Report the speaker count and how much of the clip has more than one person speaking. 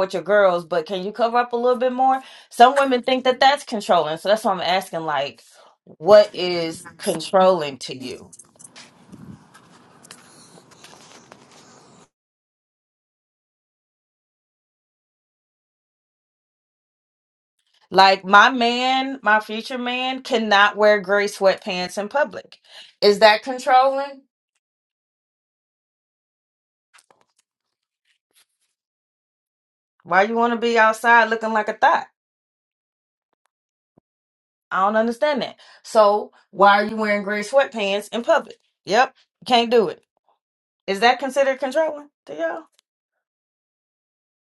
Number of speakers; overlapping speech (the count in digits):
1, no overlap